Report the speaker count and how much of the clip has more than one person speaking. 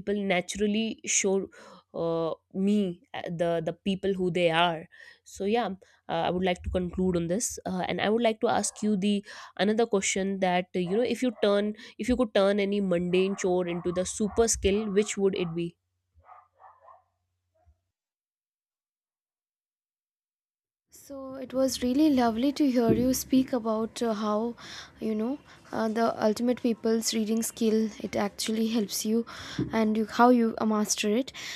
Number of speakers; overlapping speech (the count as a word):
two, no overlap